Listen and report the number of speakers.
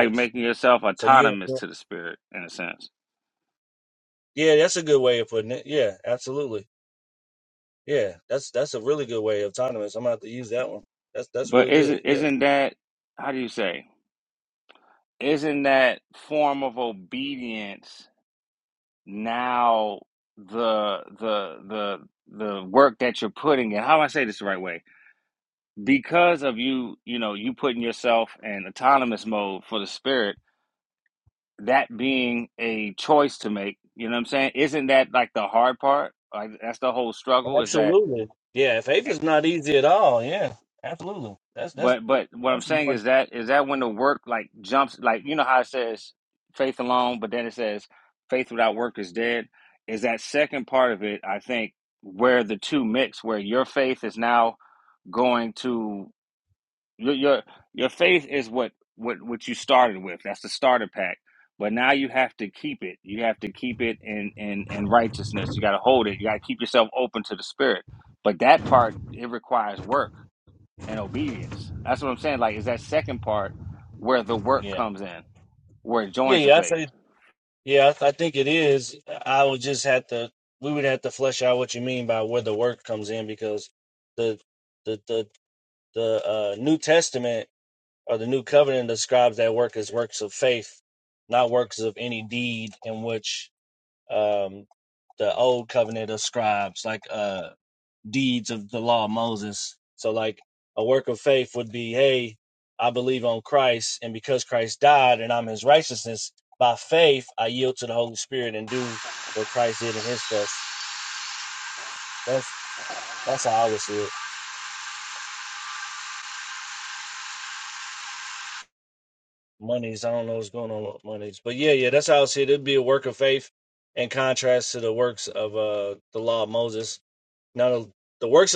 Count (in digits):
2